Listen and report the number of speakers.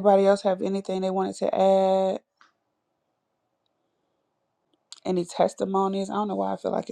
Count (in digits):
1